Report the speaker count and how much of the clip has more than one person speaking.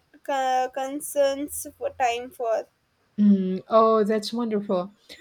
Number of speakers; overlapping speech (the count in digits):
2, no overlap